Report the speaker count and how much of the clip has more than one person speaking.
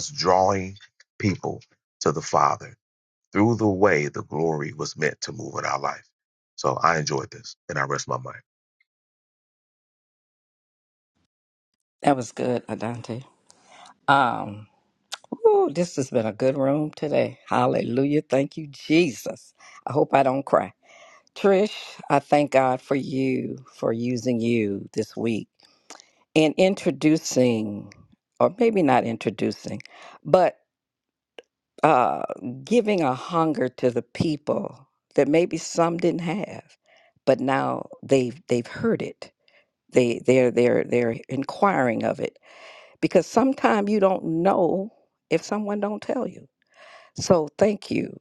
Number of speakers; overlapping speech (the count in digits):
2, no overlap